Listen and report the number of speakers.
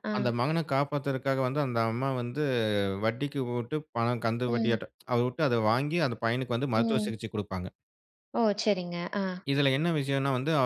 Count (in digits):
2